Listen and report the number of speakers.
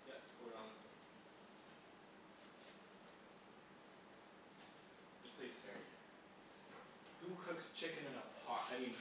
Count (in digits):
1